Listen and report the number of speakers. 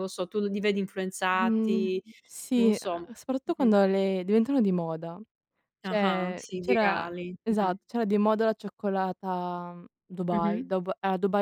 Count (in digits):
2